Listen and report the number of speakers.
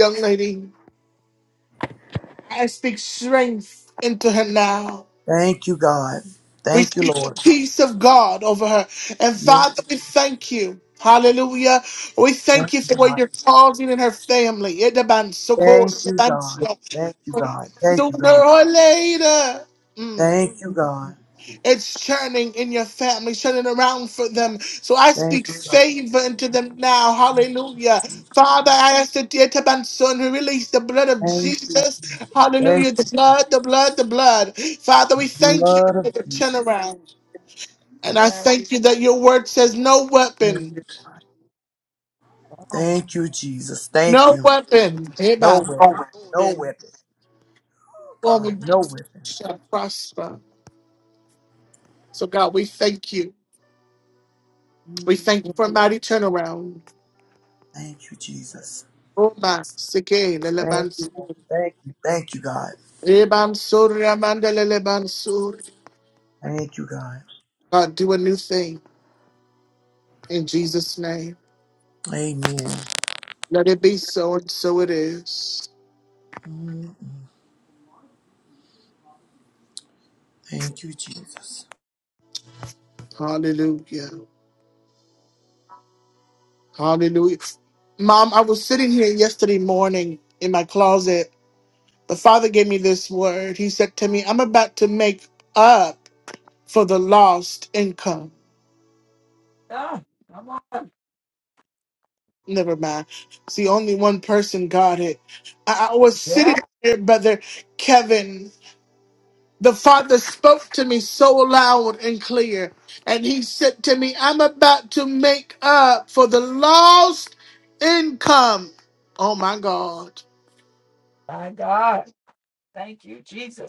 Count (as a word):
three